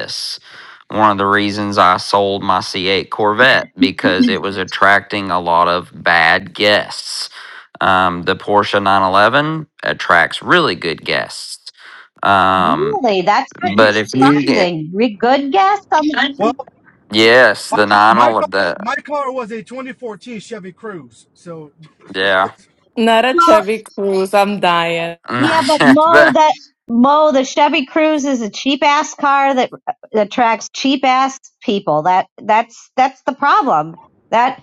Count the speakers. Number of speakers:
4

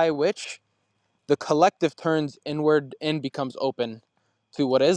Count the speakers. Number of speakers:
1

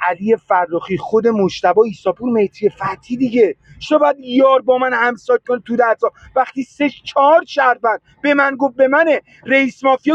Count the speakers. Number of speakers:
1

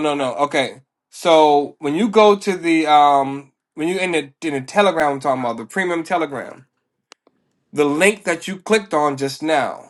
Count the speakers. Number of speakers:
1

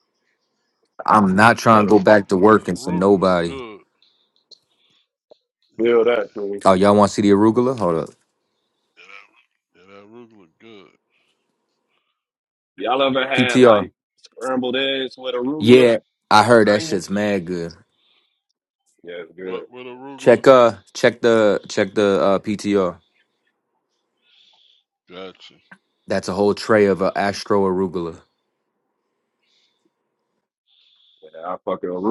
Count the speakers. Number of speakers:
3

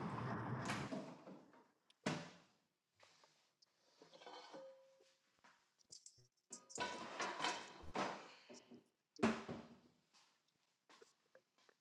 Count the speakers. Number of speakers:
0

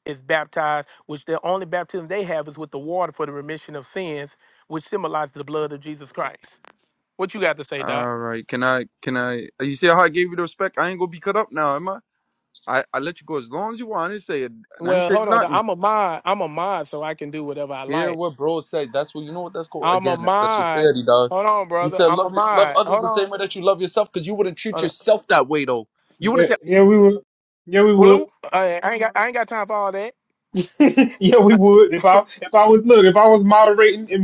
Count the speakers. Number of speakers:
3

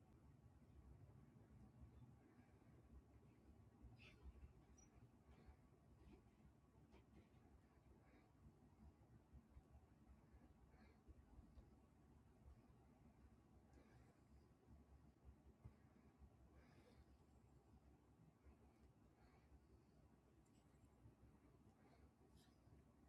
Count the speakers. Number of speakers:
0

